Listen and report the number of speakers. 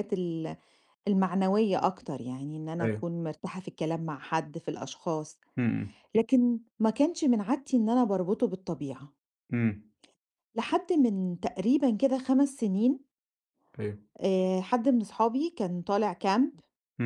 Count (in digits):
2